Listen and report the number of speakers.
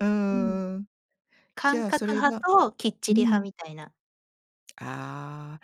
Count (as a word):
two